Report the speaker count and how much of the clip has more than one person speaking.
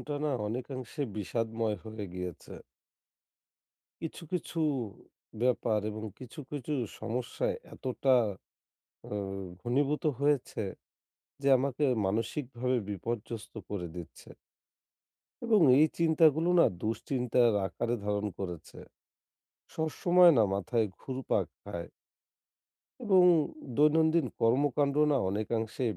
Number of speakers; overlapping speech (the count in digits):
1, no overlap